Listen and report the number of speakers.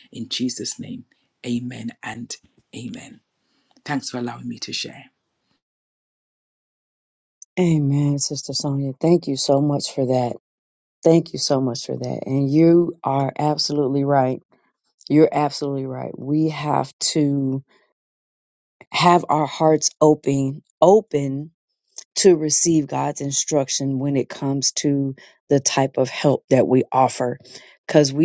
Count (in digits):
2